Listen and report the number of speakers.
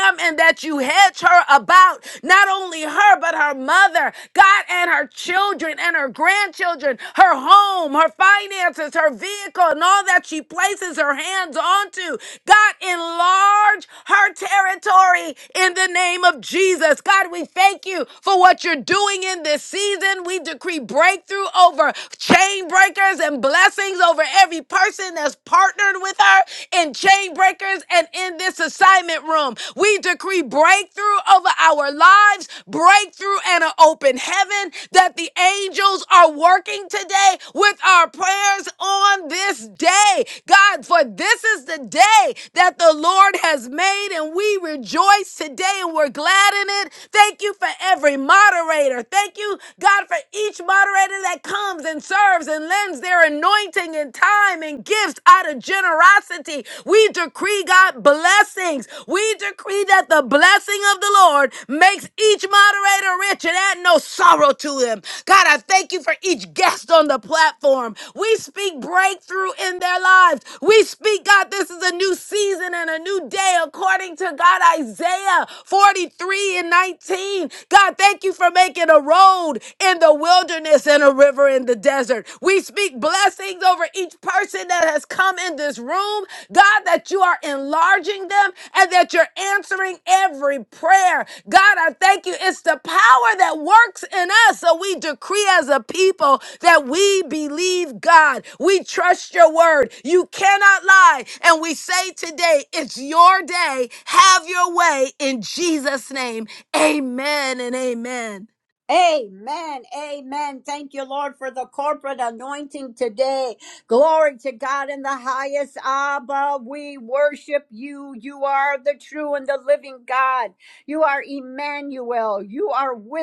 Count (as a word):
two